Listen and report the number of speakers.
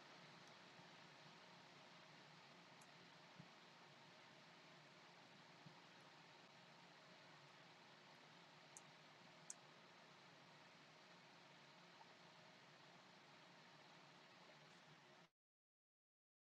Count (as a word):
zero